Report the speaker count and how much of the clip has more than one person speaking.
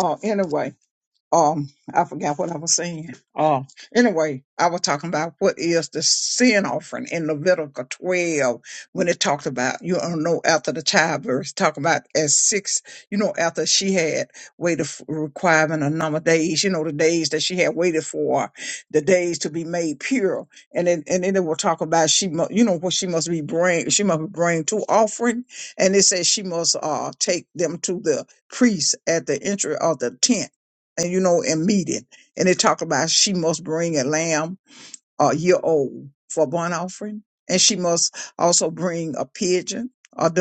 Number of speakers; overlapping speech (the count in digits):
1, no overlap